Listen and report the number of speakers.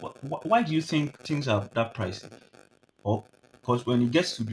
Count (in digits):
1